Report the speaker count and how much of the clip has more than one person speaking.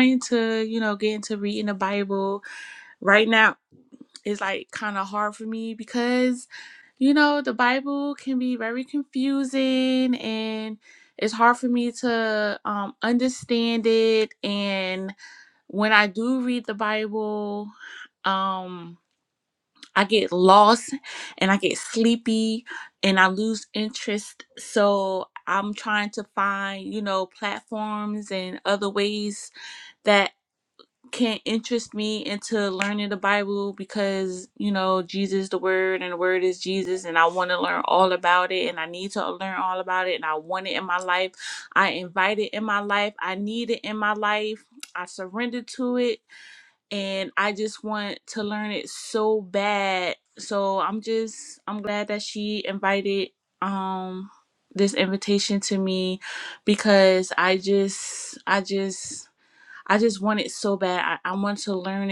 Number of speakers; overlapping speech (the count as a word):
one, no overlap